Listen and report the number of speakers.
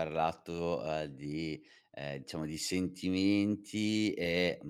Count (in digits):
1